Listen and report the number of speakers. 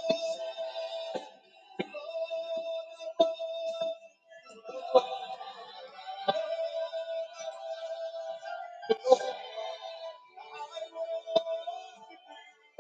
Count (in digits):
0